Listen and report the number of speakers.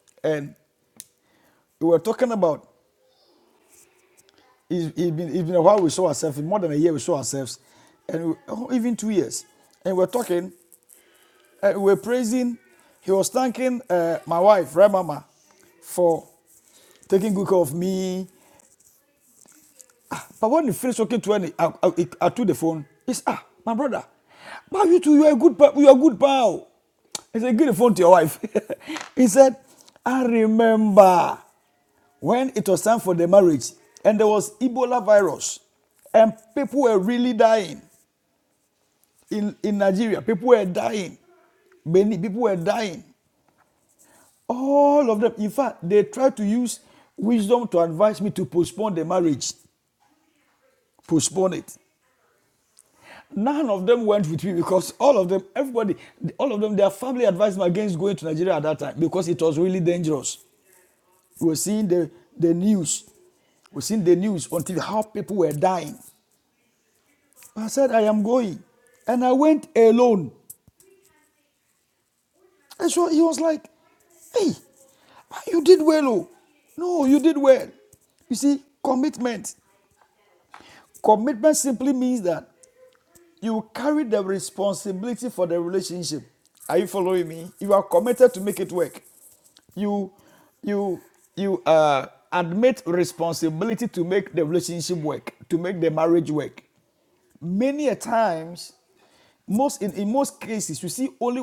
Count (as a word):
one